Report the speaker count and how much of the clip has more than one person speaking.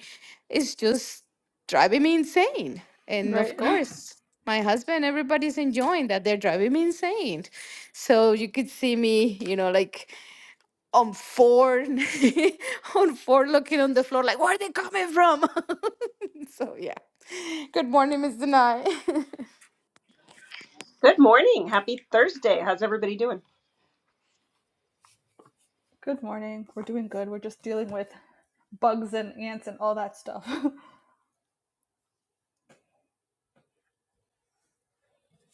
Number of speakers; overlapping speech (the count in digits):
3, about 1%